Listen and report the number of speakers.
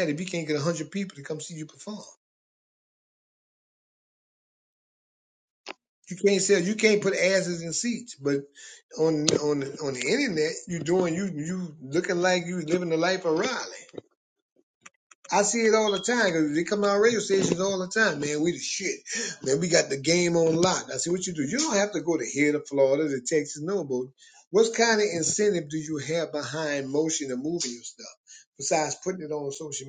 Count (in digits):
1